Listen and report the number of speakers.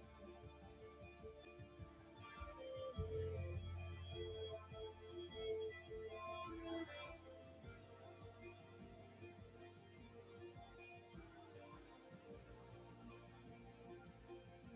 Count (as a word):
zero